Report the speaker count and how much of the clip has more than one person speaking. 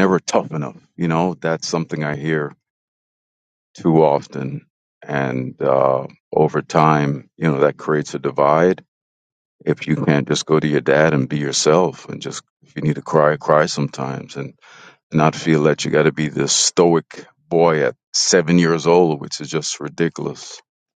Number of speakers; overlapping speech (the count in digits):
1, no overlap